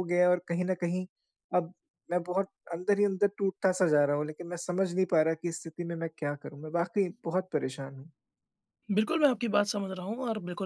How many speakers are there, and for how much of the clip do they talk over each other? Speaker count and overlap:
two, no overlap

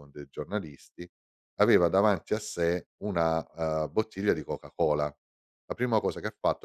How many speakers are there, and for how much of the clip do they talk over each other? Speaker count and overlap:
one, no overlap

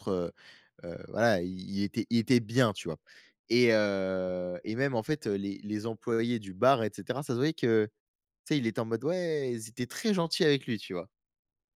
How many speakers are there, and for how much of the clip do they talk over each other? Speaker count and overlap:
one, no overlap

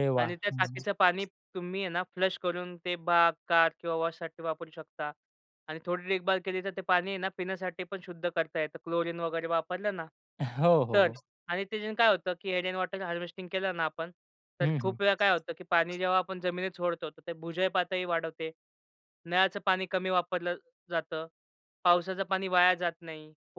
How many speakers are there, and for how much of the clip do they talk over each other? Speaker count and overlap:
two, about 4%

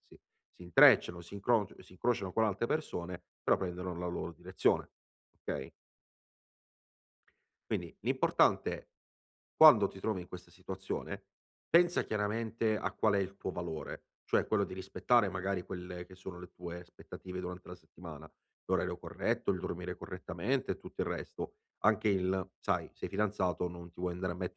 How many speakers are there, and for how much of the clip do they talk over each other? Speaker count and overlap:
one, no overlap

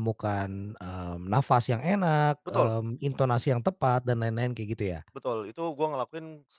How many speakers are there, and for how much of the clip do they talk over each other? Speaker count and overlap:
two, about 4%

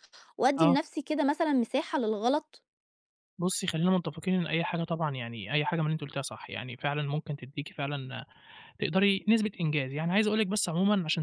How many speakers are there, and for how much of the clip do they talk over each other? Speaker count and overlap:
two, about 2%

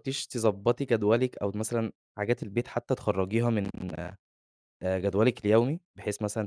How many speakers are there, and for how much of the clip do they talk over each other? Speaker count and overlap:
one, no overlap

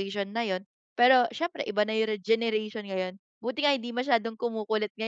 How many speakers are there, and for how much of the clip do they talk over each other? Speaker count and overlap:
one, no overlap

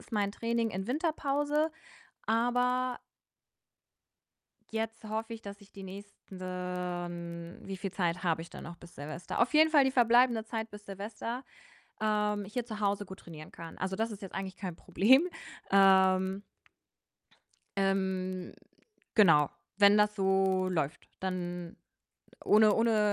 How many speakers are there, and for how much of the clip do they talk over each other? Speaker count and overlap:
one, no overlap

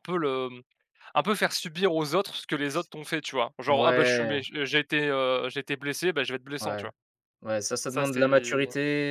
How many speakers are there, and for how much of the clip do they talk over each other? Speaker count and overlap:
two, about 18%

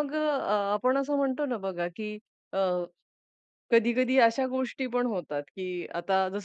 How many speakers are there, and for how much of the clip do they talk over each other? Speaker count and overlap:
one, no overlap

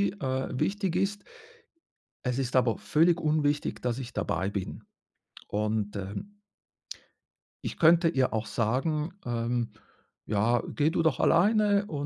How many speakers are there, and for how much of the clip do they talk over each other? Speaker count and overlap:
one, no overlap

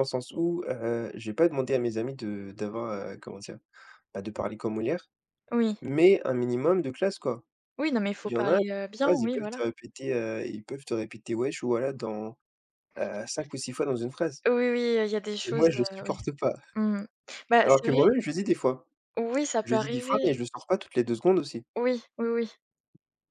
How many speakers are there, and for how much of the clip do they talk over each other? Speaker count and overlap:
two, about 12%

